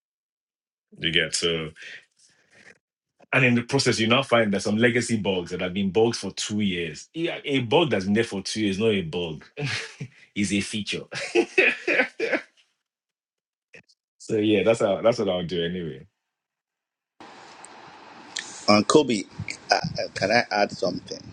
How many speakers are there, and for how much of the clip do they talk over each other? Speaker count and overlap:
2, no overlap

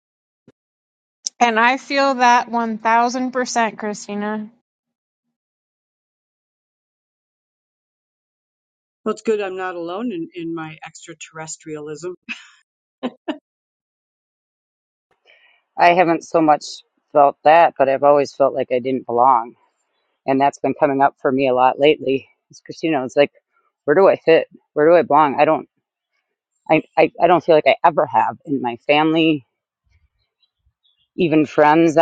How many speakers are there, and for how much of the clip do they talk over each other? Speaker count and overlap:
3, no overlap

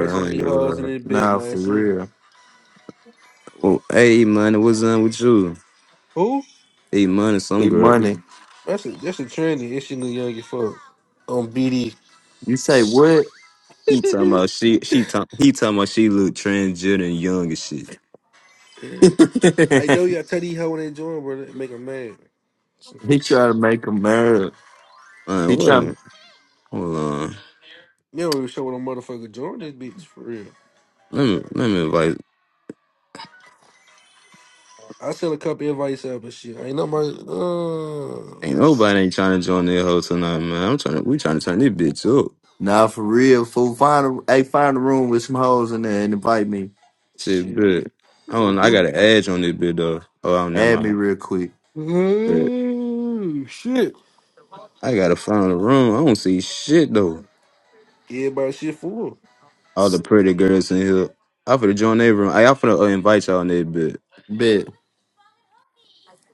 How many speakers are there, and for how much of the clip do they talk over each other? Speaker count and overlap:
3, about 6%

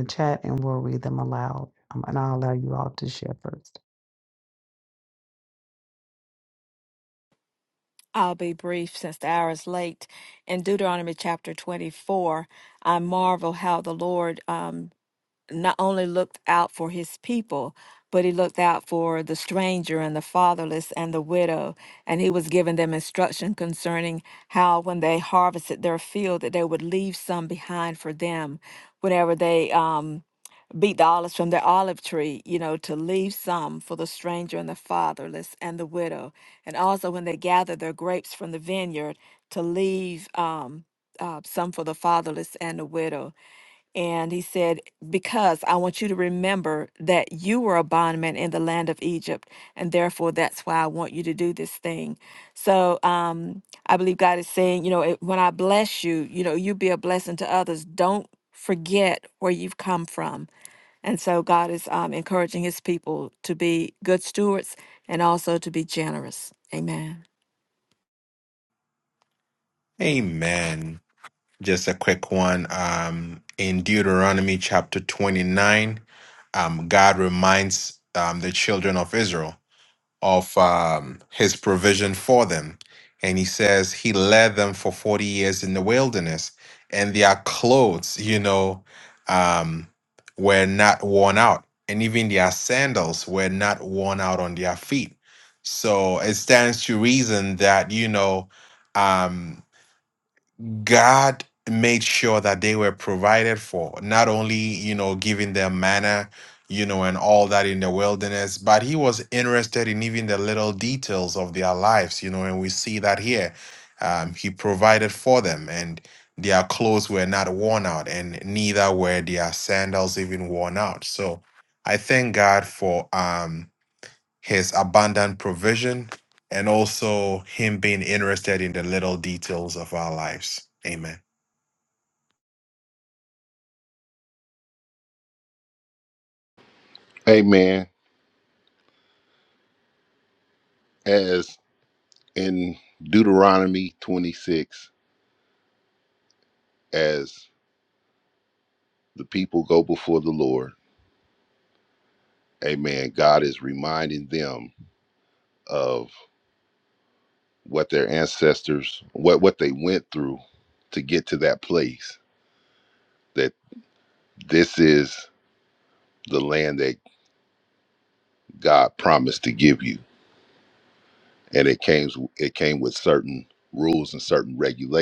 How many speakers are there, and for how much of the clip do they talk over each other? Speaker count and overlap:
4, no overlap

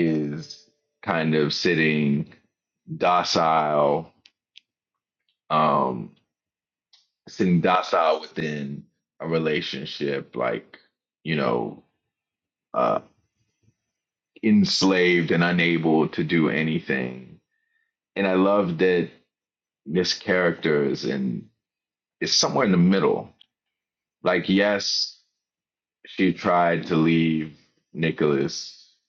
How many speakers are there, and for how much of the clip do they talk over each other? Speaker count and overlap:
1, no overlap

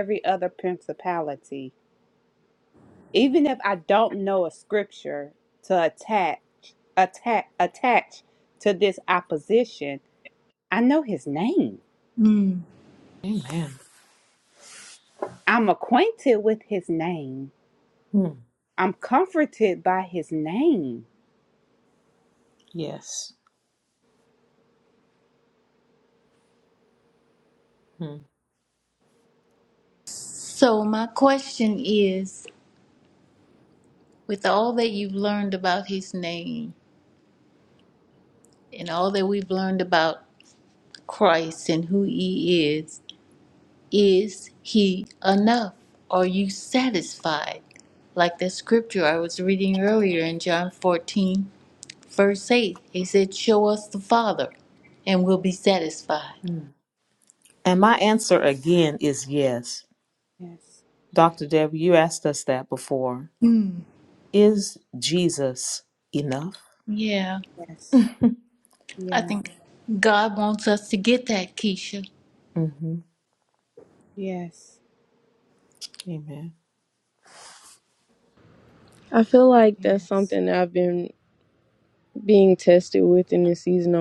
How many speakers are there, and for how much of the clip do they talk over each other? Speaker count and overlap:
4, under 1%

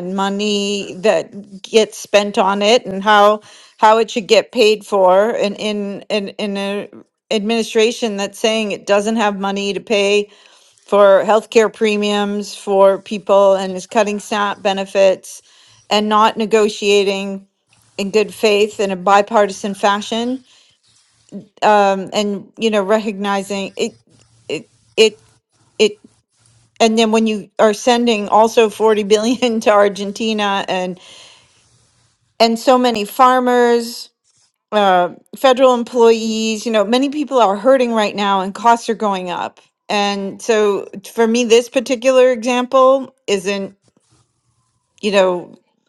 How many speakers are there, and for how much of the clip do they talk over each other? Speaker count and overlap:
1, no overlap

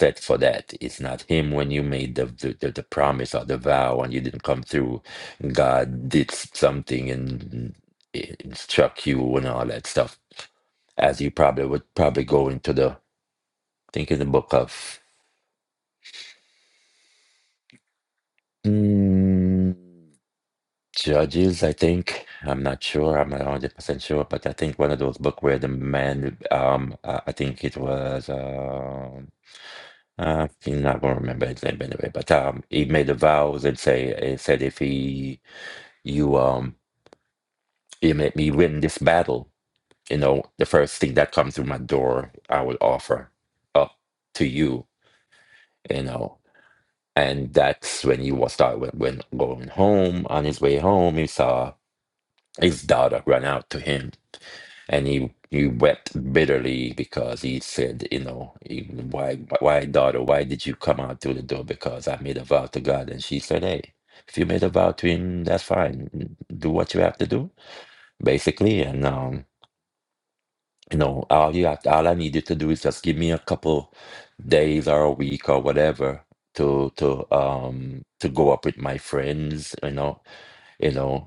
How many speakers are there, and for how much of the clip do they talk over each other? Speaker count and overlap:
1, no overlap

